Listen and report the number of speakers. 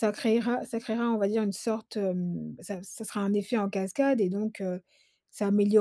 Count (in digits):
1